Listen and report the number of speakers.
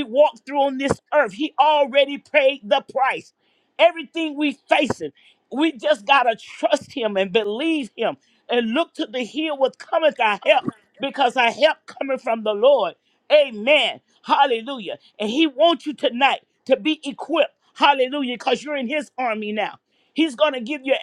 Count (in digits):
1